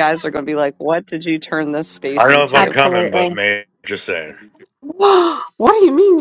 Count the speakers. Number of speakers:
three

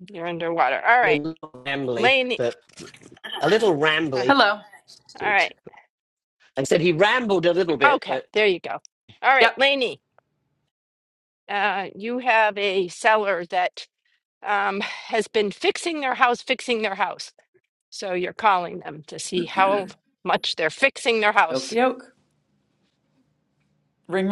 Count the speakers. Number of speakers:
three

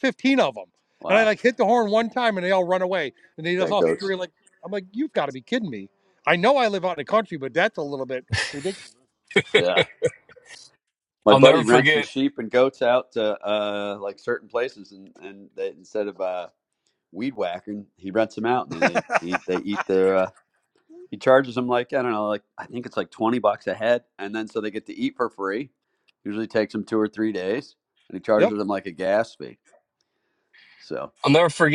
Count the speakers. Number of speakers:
three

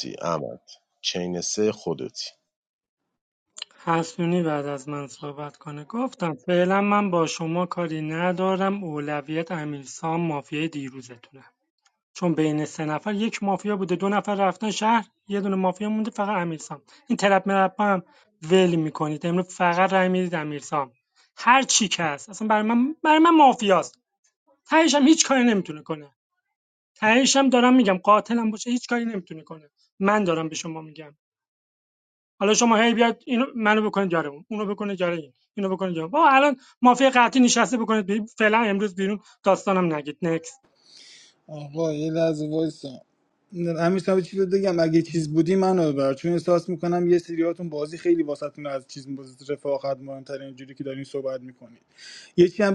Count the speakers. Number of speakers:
three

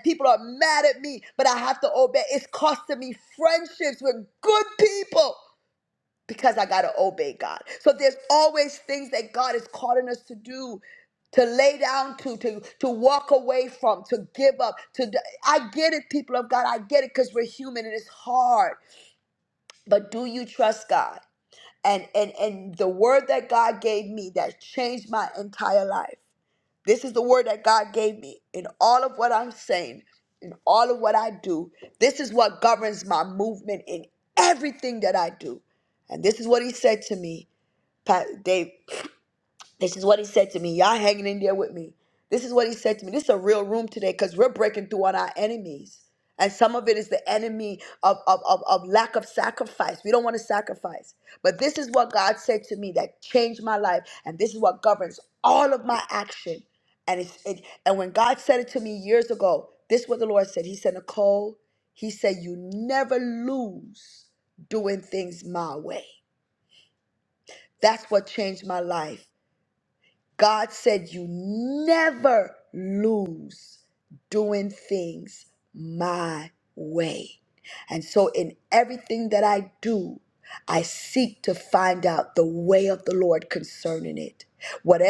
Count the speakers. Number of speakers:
one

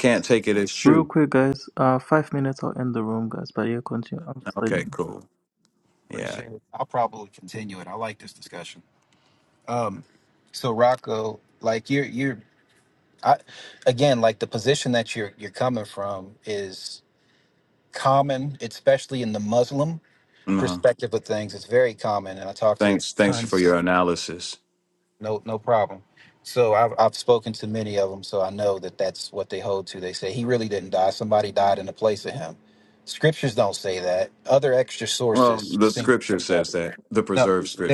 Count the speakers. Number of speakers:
three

